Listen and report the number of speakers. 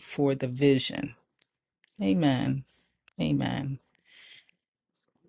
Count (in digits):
1